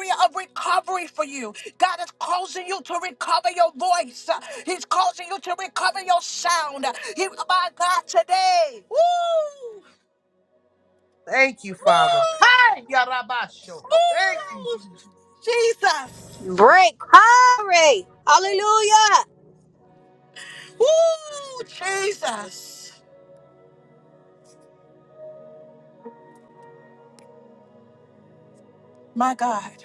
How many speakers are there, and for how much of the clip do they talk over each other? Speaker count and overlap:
3, about 3%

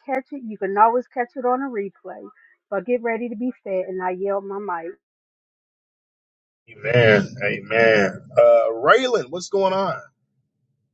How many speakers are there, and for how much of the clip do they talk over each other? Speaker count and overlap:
2, no overlap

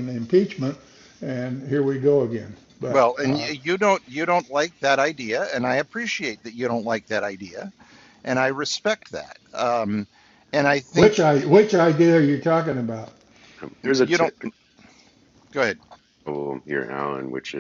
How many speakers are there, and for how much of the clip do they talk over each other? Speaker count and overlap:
3, about 7%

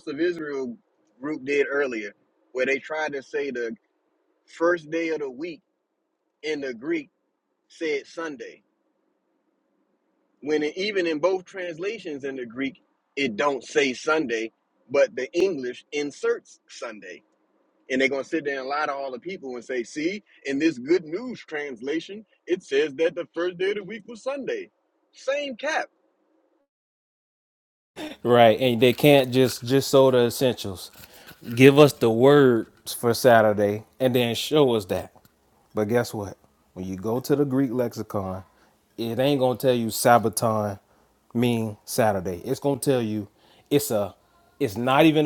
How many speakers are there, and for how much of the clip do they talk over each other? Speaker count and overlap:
2, no overlap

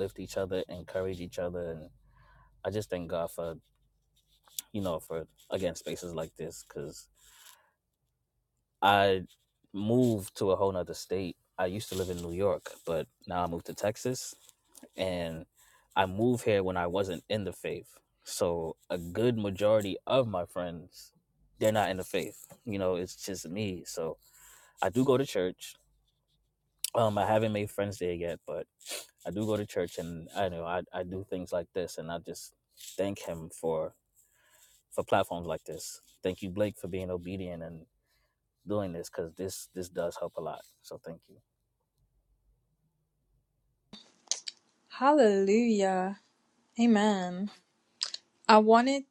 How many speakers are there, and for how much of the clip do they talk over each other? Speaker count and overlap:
2, no overlap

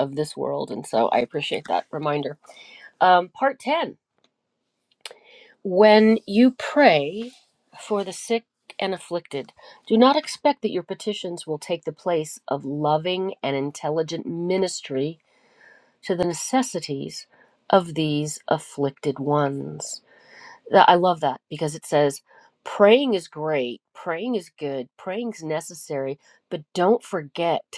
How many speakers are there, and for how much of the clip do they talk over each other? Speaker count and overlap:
1, no overlap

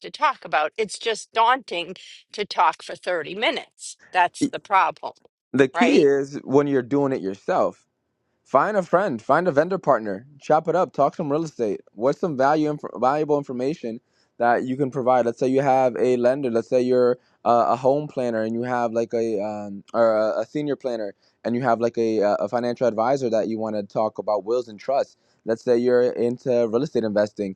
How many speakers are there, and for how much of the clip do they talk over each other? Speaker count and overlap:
2, about 1%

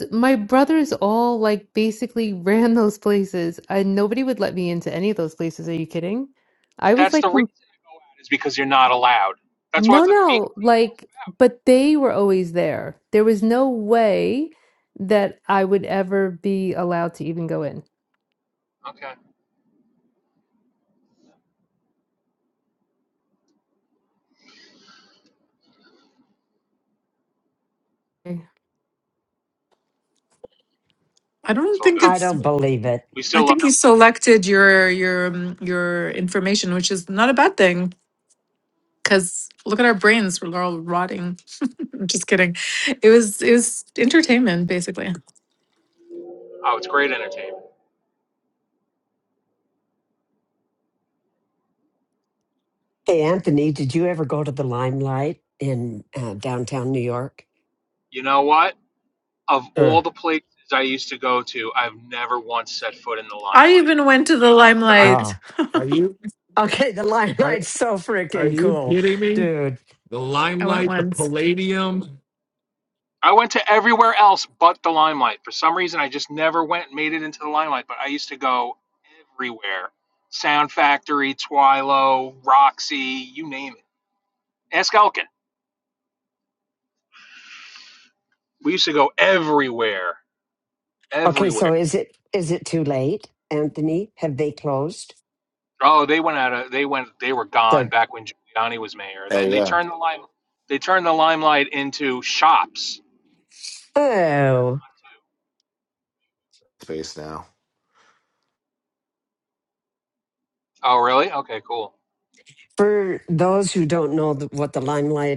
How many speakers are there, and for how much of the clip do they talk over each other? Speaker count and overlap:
6, about 5%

